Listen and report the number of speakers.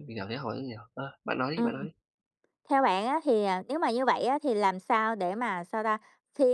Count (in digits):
2